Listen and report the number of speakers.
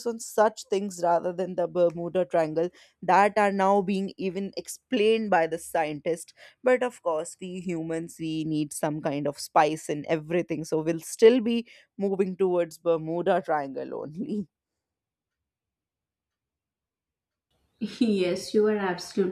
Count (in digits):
2